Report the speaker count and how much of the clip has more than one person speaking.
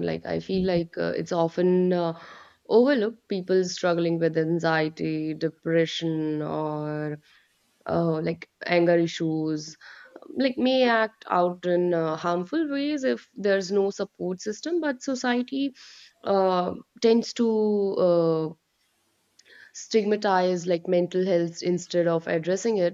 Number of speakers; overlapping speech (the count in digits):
1, no overlap